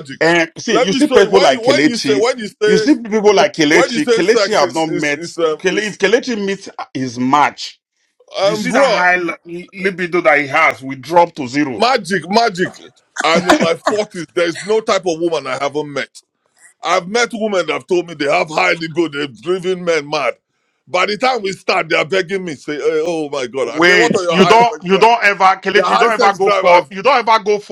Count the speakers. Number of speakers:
two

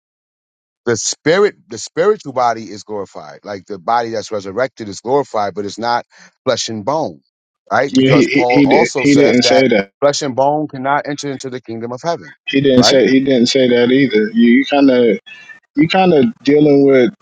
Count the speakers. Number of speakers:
two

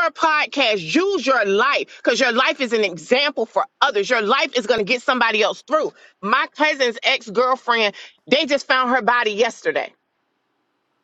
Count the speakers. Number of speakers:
one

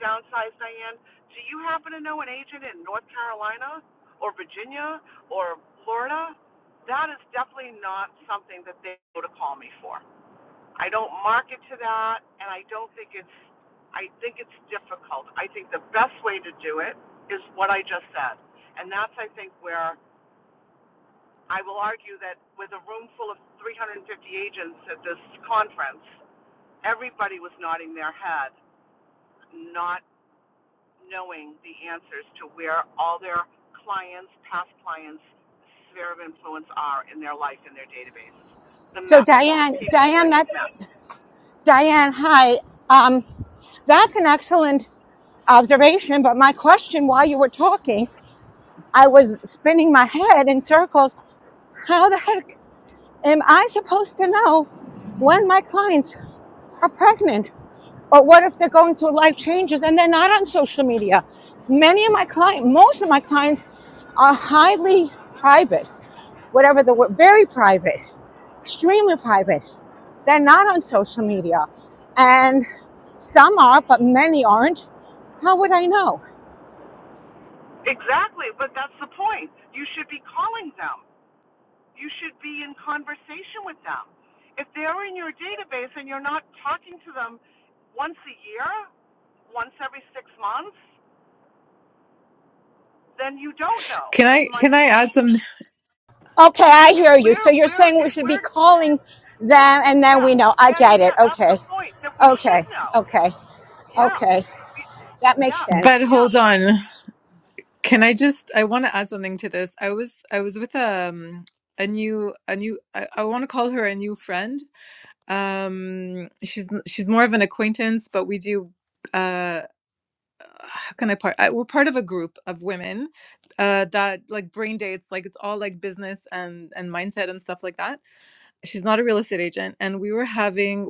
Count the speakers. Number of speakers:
three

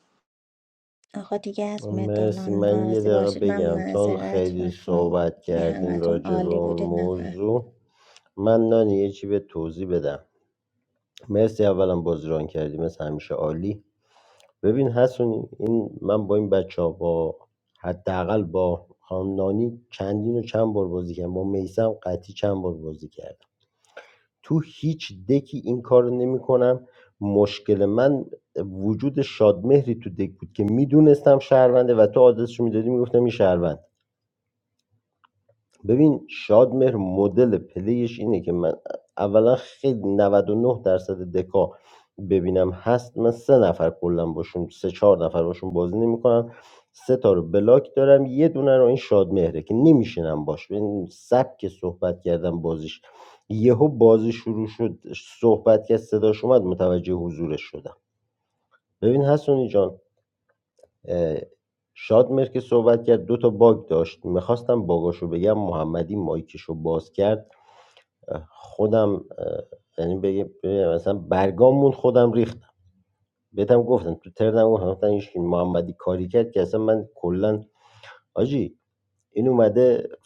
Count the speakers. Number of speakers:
two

